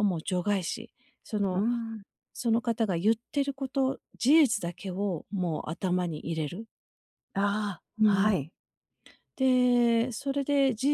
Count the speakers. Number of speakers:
two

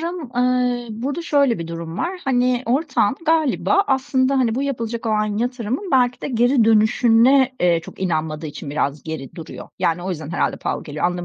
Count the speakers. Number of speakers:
one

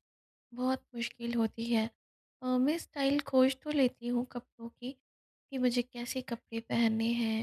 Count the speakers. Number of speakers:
one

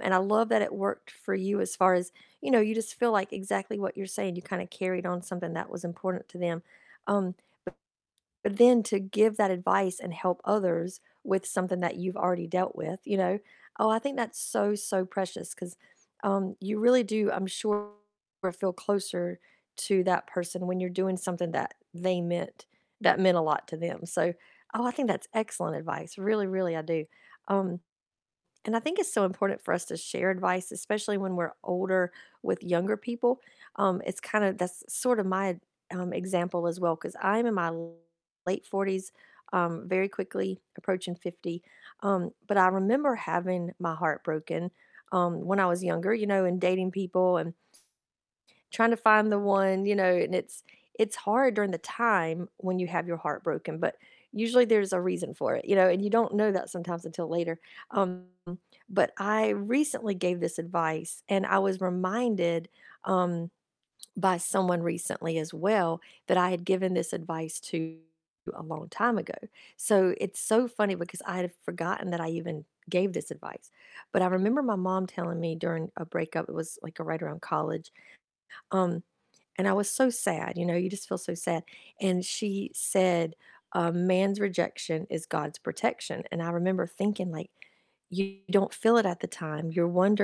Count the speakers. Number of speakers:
one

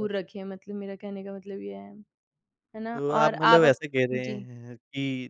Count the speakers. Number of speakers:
two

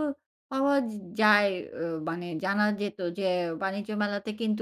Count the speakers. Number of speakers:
one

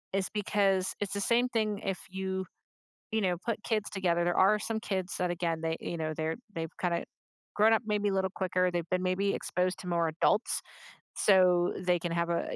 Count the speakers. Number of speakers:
one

